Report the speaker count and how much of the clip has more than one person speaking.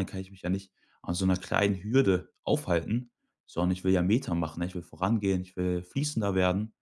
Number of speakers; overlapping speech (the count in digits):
1, no overlap